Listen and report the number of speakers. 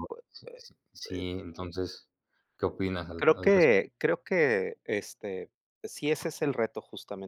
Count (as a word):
two